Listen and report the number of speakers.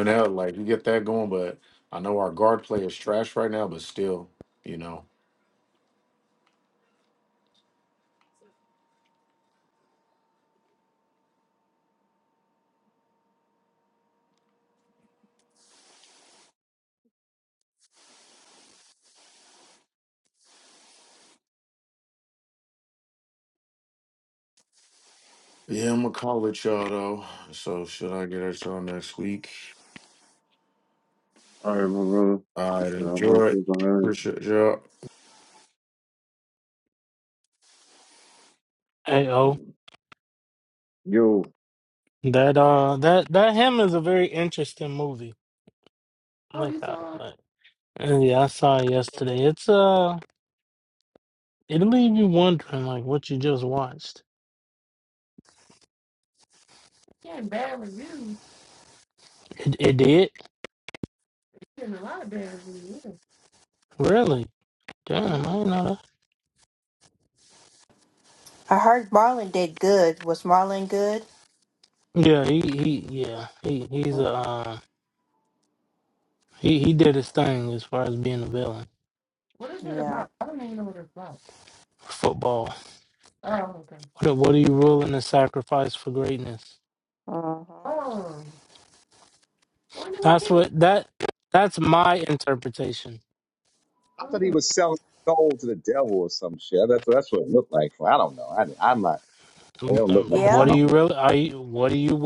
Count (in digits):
6